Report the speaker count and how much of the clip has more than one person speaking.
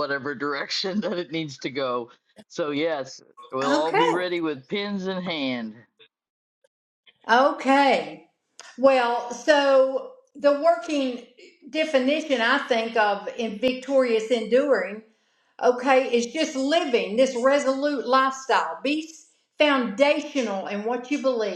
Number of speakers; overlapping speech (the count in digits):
2, about 3%